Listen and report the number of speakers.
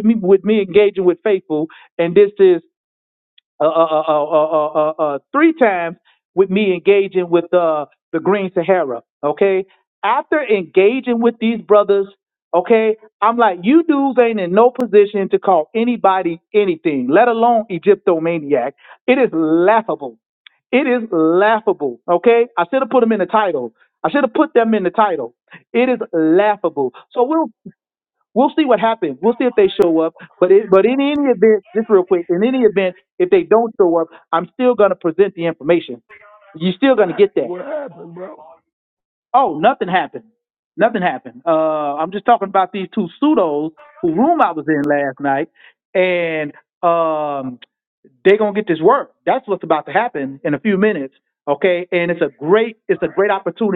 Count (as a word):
two